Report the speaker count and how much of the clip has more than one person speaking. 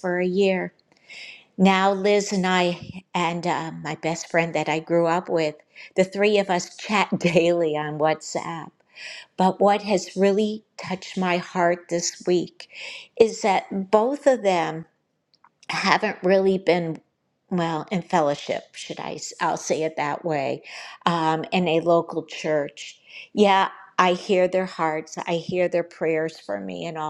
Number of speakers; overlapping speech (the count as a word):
one, no overlap